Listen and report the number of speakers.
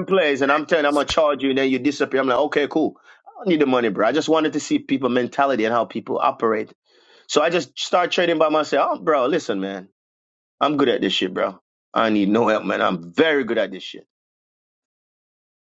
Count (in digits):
1